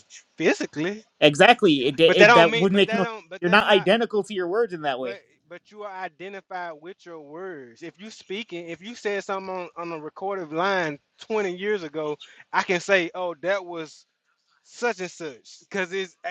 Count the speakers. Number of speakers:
two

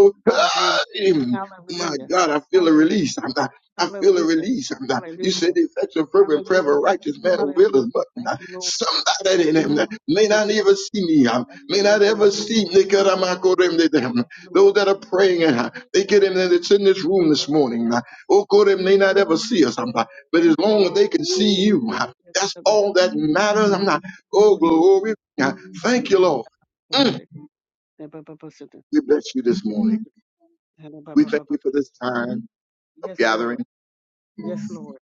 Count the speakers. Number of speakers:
two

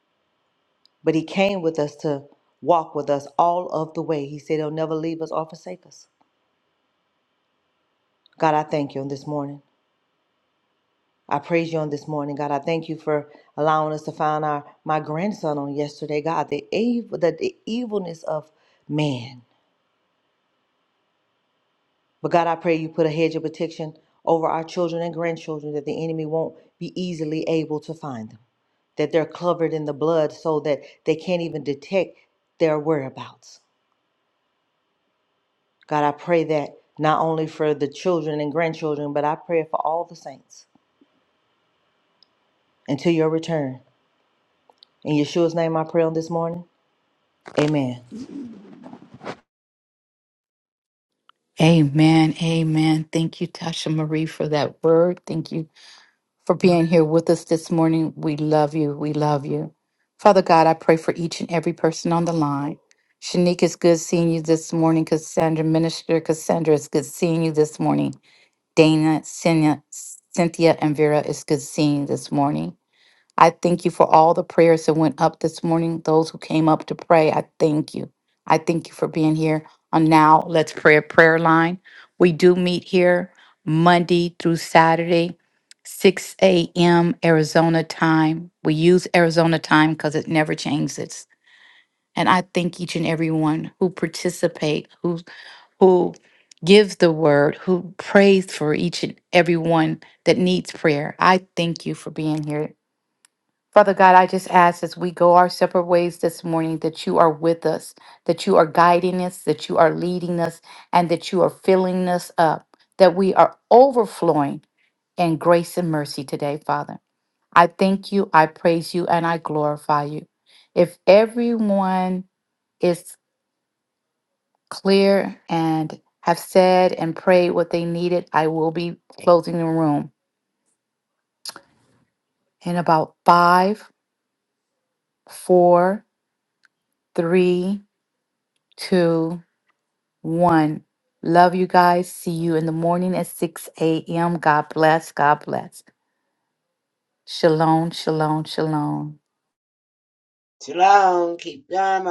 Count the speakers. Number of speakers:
three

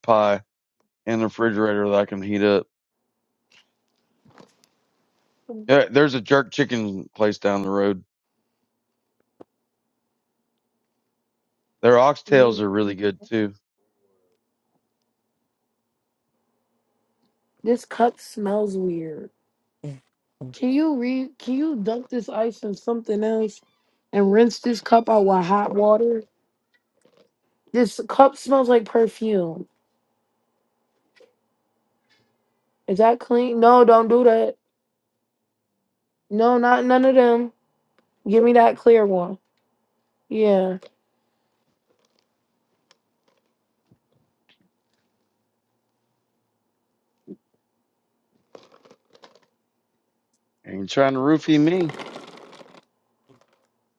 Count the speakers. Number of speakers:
two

